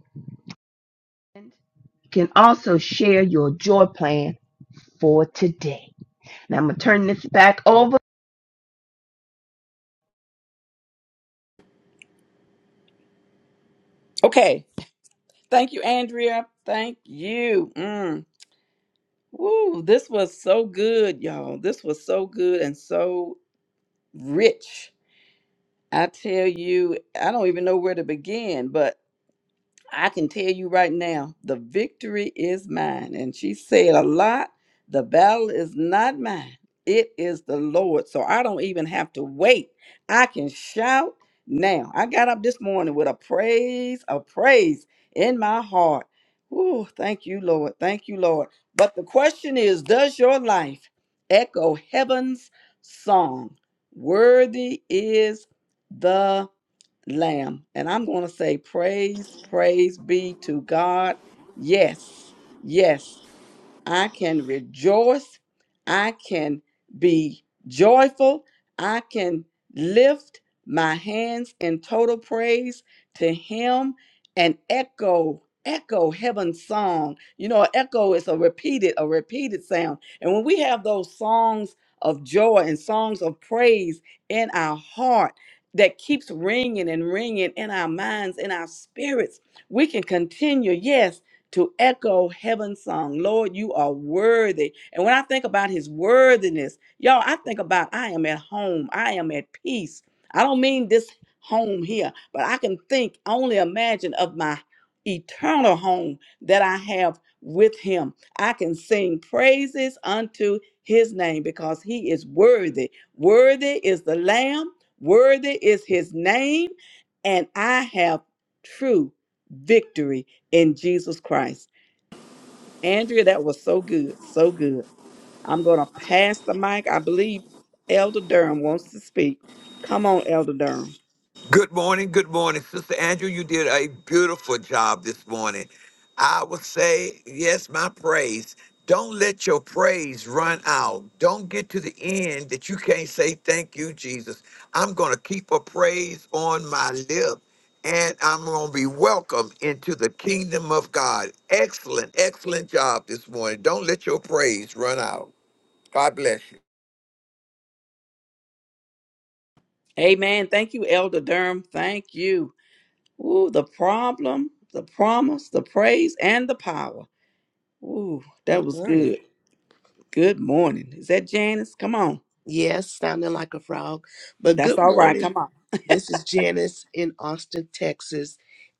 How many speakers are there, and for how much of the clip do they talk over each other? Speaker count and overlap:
4, about 1%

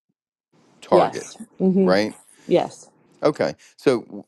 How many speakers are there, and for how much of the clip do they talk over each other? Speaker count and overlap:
2, about 12%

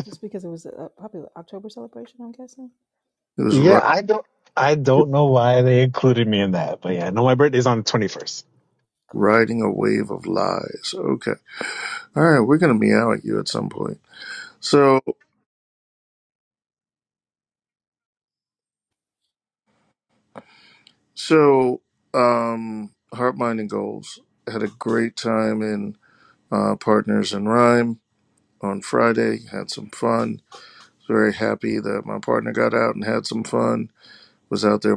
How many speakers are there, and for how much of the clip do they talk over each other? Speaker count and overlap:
3, about 1%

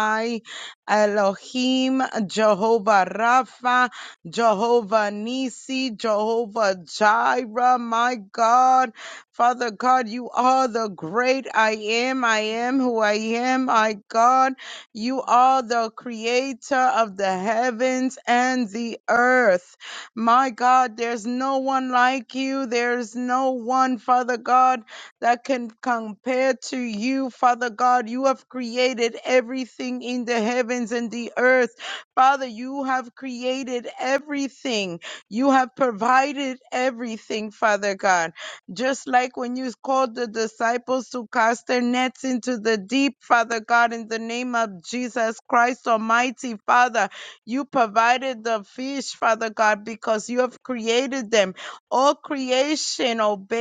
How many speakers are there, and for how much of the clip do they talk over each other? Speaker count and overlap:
1, no overlap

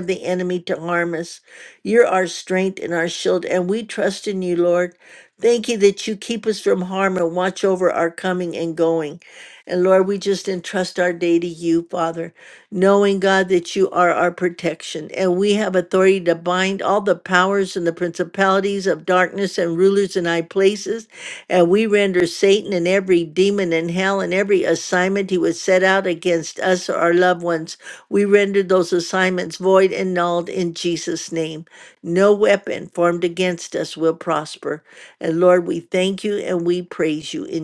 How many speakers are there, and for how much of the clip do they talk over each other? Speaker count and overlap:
1, no overlap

